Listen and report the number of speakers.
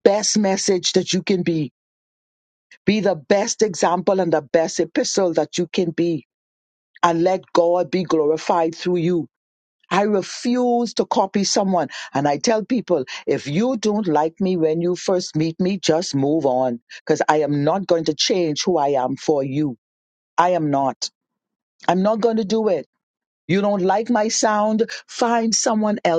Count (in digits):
1